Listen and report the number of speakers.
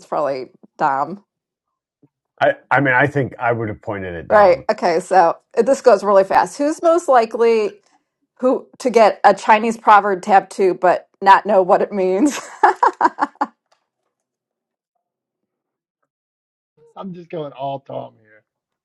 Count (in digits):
3